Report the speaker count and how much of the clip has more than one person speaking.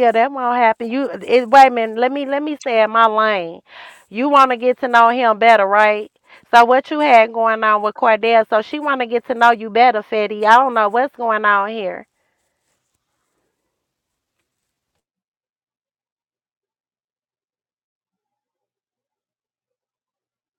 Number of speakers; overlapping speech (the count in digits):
1, no overlap